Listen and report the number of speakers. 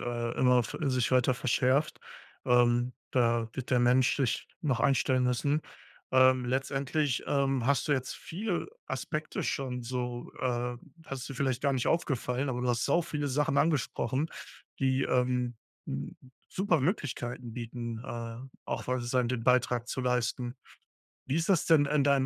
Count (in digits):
1